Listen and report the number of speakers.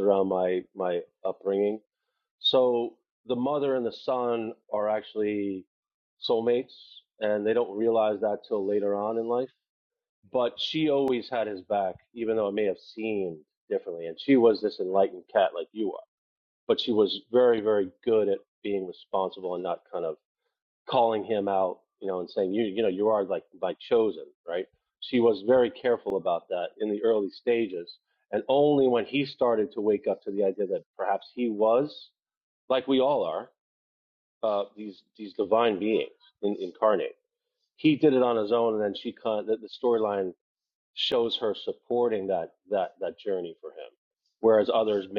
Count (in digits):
1